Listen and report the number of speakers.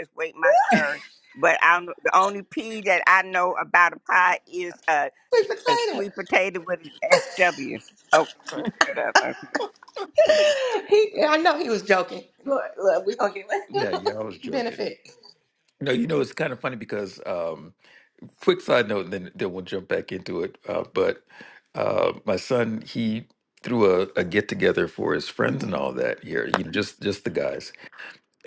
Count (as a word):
three